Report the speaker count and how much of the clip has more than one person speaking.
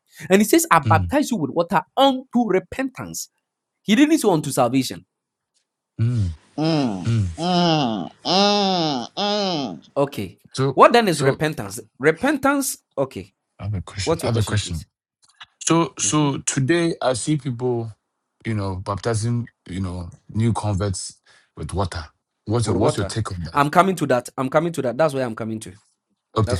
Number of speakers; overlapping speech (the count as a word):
three, about 8%